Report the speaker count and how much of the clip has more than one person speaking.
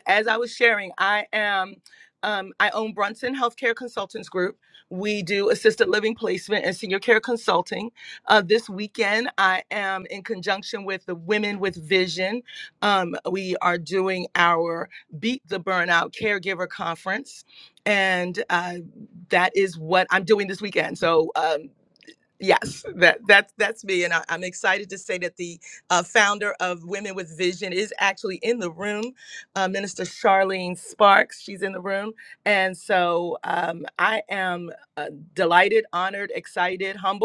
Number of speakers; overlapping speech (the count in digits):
1, no overlap